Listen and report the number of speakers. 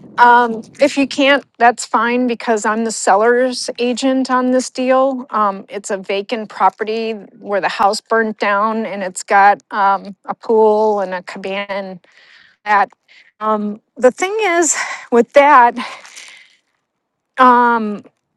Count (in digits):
1